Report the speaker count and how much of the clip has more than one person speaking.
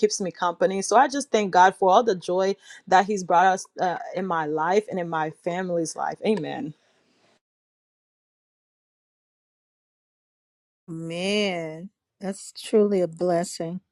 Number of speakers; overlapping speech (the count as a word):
two, no overlap